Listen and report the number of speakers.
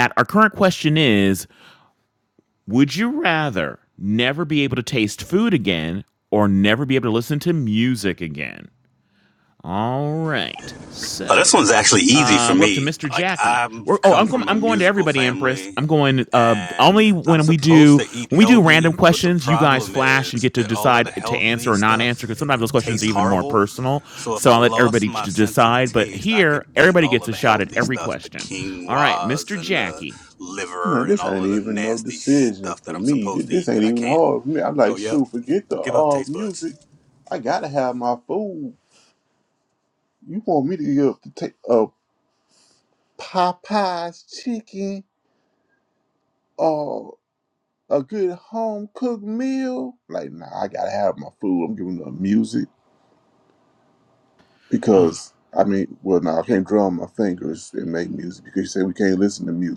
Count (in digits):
3